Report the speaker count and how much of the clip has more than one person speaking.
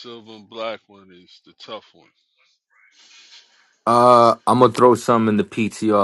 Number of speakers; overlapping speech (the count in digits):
2, no overlap